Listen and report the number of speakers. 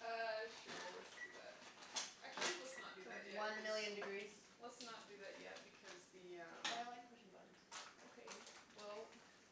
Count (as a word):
two